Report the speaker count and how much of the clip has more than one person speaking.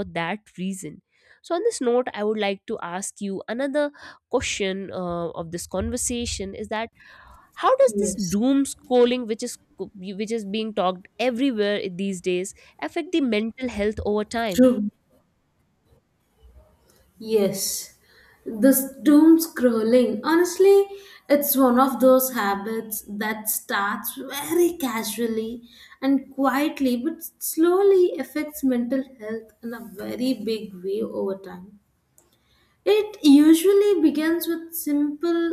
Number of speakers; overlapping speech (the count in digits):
2, about 1%